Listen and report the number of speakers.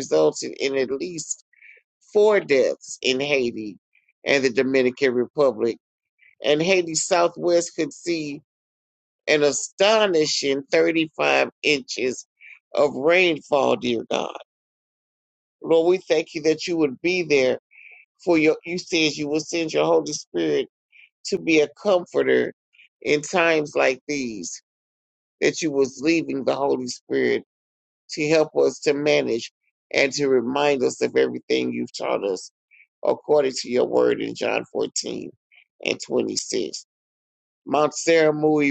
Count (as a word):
one